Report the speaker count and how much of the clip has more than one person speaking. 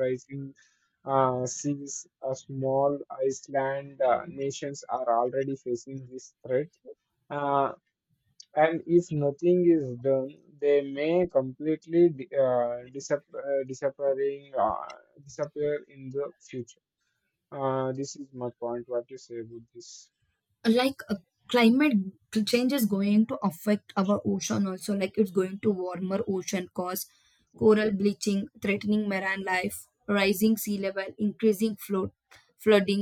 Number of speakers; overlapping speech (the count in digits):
2, no overlap